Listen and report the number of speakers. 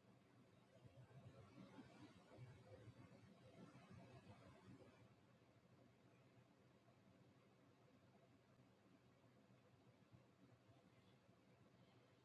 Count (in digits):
0